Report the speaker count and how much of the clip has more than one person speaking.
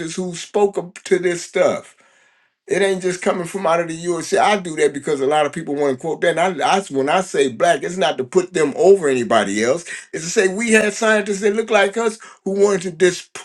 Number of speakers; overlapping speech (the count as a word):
one, no overlap